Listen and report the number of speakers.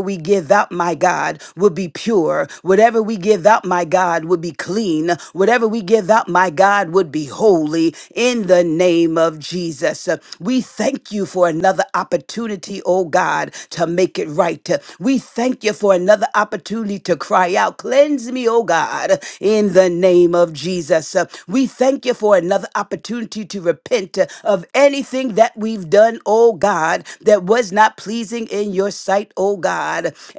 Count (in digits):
1